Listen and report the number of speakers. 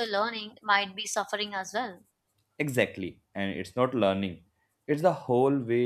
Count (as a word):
two